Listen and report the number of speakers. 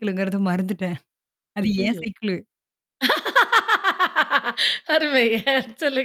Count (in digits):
2